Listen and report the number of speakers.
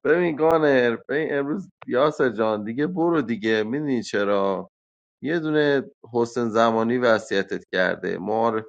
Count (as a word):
one